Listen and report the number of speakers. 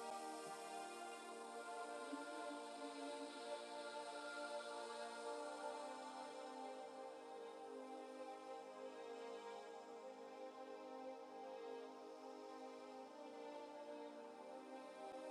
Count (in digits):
0